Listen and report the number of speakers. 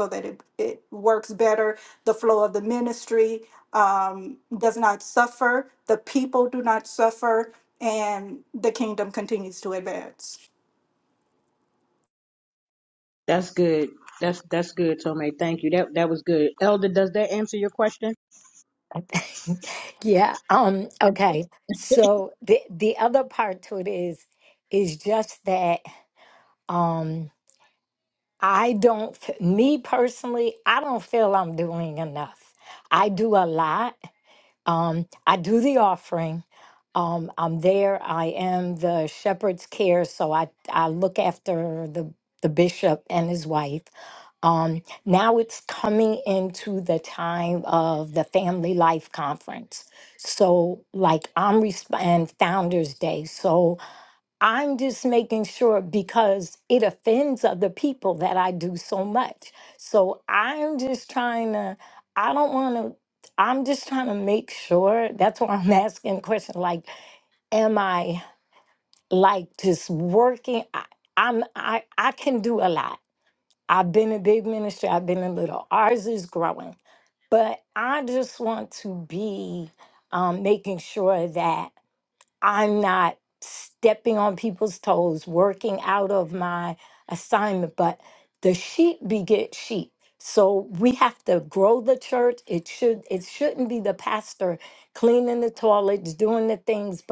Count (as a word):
three